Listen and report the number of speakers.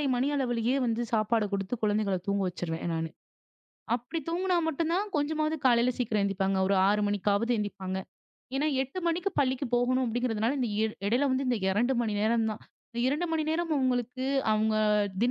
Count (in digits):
1